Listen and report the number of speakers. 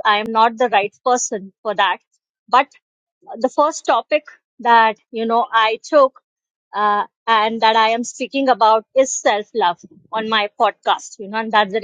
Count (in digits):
1